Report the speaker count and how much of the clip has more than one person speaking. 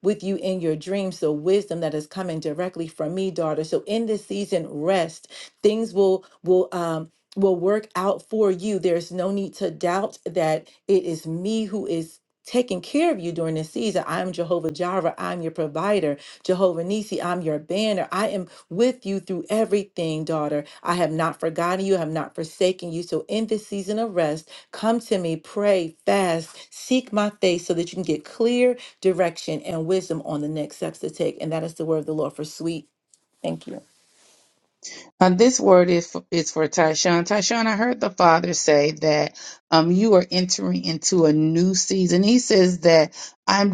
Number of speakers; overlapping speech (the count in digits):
2, no overlap